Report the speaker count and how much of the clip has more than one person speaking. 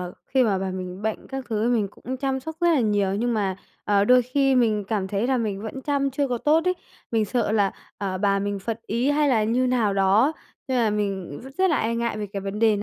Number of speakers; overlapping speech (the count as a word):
one, no overlap